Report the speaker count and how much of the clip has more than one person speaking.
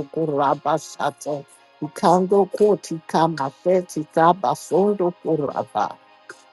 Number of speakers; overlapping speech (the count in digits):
1, no overlap